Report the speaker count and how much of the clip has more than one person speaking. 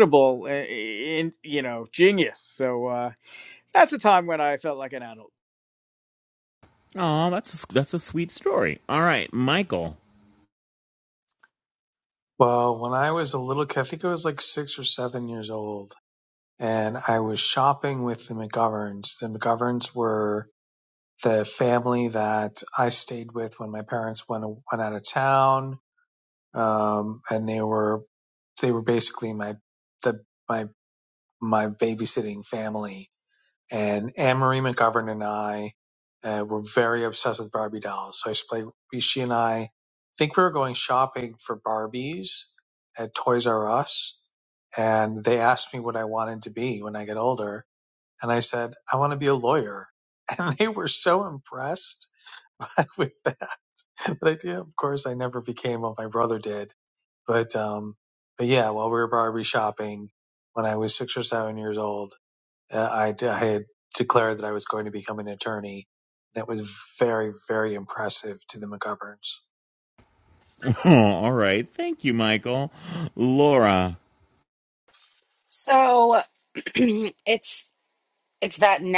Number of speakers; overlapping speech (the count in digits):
4, no overlap